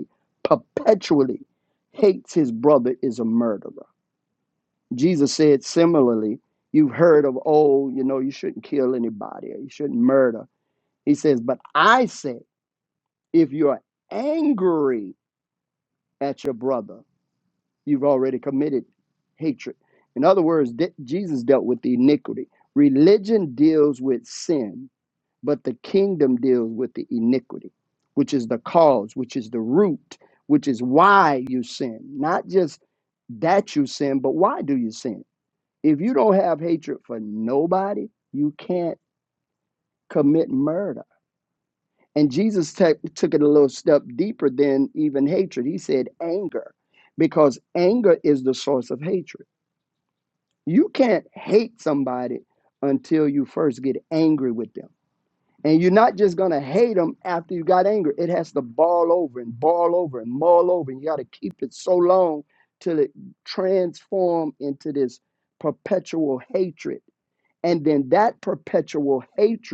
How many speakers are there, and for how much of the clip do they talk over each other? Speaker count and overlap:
1, no overlap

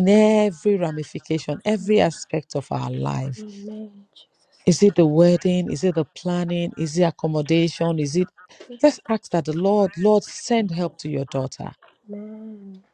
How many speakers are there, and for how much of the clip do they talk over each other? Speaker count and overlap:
2, no overlap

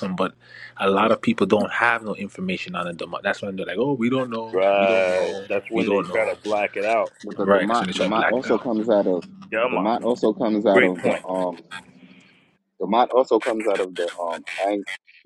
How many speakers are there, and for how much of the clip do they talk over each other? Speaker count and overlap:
3, about 25%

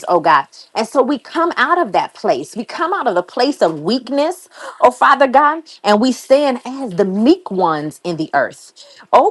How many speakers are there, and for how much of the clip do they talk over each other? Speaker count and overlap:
1, no overlap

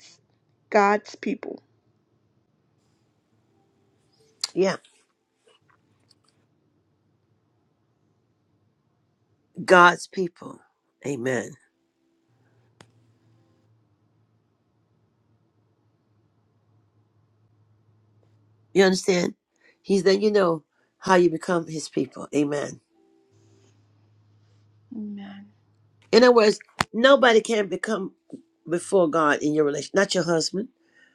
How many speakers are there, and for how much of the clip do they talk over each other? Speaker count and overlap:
2, no overlap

